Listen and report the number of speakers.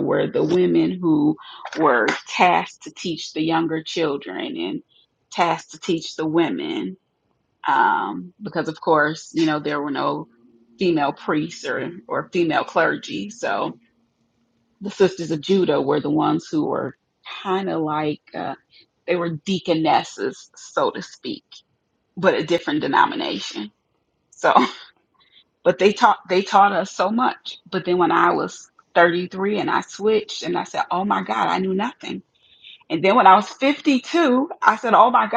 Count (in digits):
1